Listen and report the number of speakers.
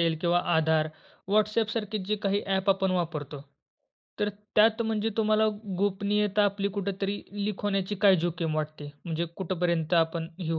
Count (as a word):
one